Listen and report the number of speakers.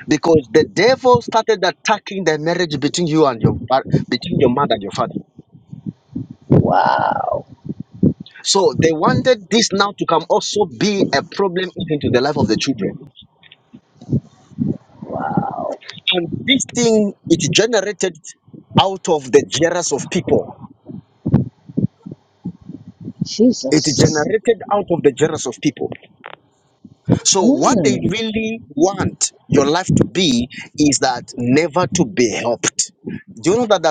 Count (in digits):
2